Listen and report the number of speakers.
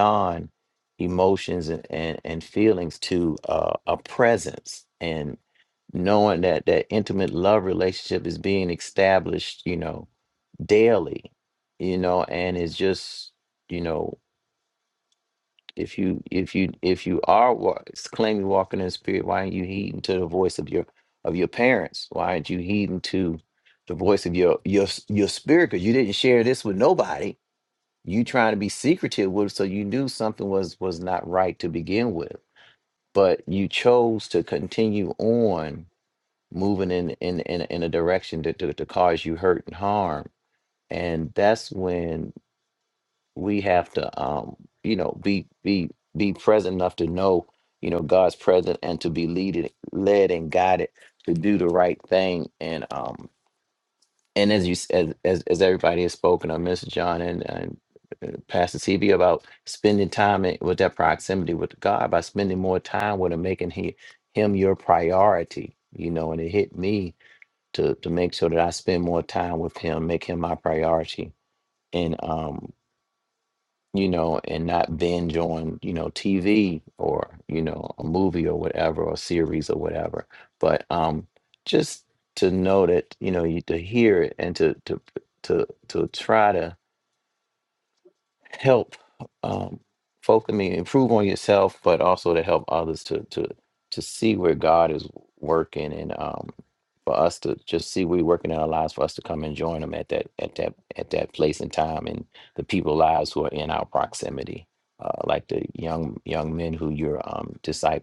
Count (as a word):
one